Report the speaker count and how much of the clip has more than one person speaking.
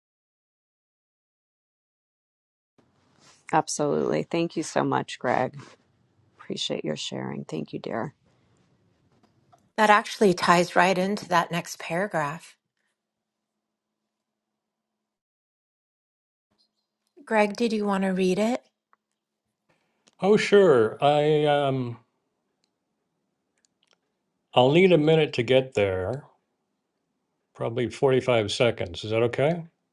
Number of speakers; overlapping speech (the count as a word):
three, no overlap